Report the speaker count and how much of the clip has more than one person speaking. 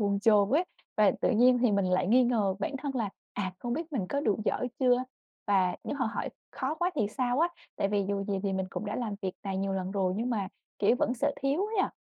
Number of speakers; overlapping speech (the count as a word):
one, no overlap